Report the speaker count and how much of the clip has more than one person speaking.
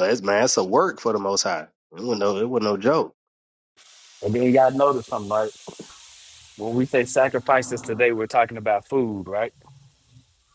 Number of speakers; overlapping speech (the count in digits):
2, no overlap